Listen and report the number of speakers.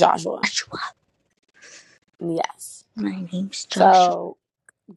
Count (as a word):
two